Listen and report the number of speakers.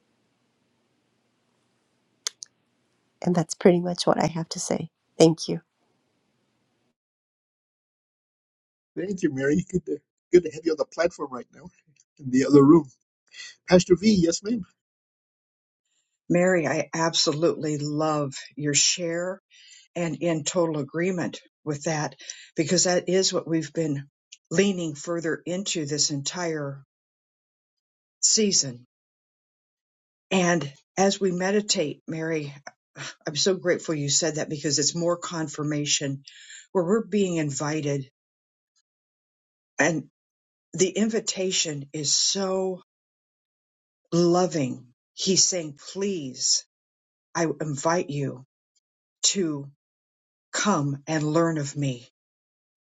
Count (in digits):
3